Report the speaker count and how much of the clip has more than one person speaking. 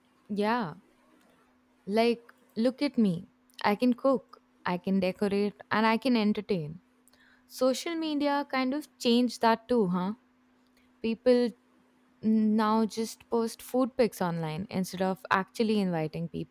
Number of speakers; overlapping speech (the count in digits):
1, no overlap